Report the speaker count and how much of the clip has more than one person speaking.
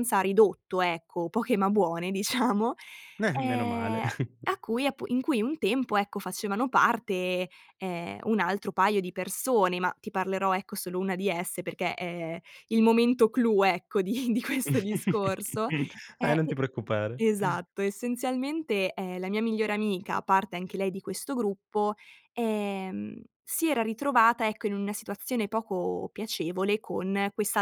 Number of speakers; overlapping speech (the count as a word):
two, about 3%